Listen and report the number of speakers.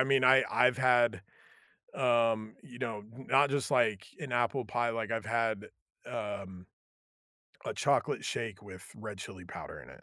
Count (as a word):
one